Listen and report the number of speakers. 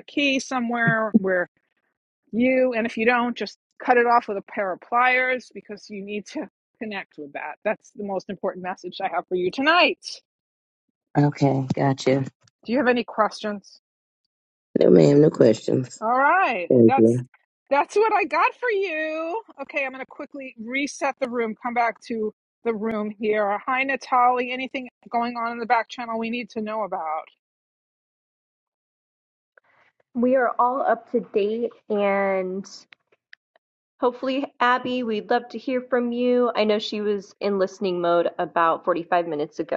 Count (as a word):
three